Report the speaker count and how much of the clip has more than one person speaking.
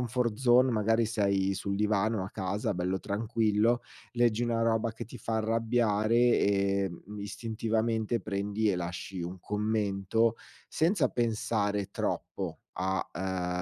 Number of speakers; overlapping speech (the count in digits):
1, no overlap